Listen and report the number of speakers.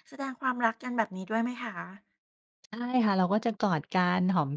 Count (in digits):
2